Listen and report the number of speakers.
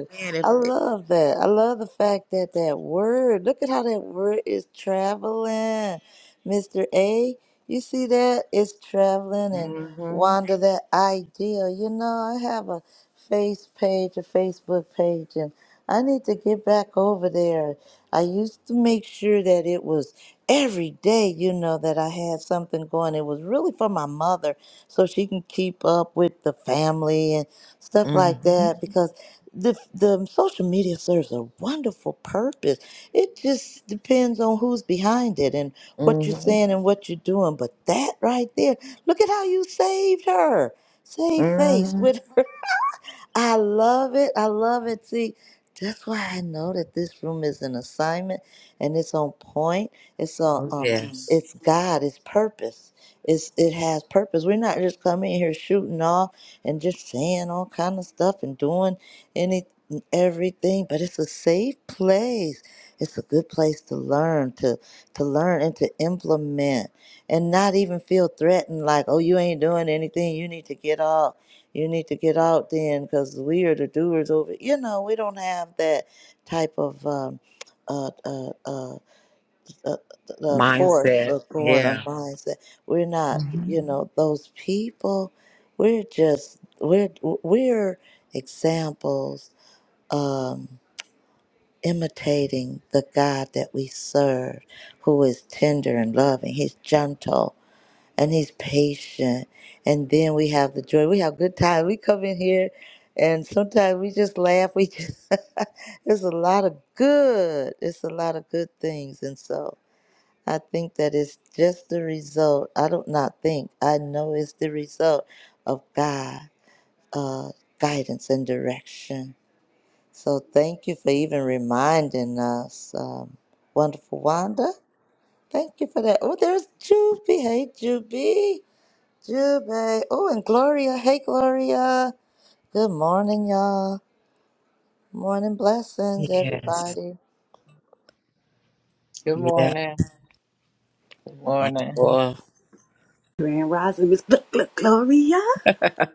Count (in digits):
4